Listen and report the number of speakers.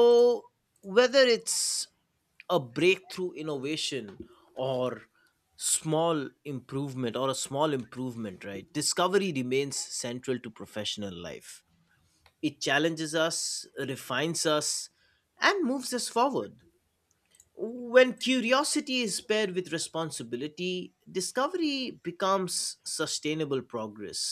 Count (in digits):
1